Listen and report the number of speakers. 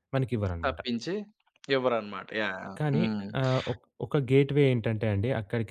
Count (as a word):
two